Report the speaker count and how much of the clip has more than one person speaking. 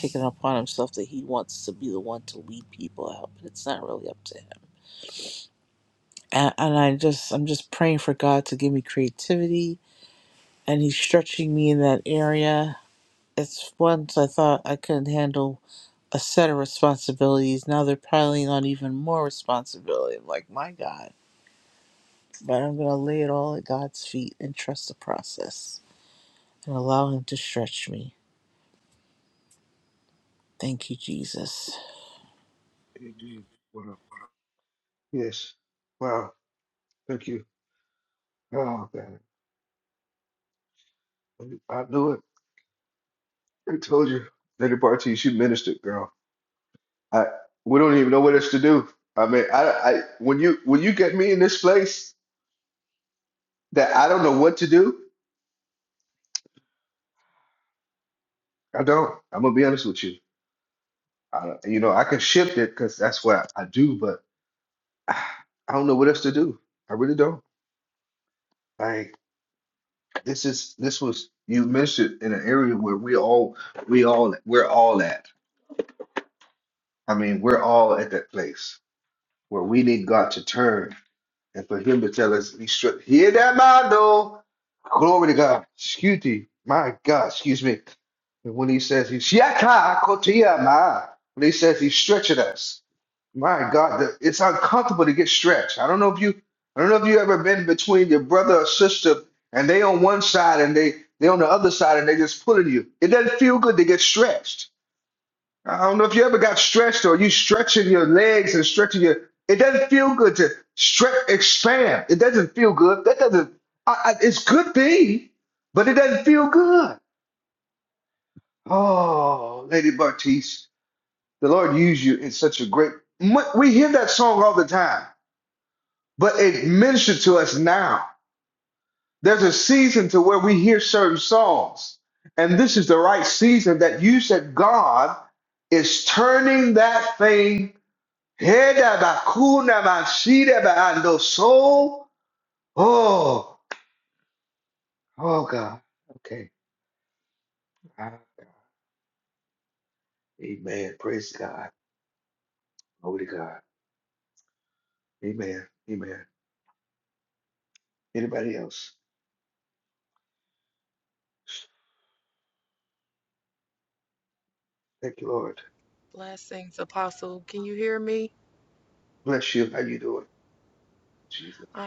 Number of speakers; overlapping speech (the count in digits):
3, no overlap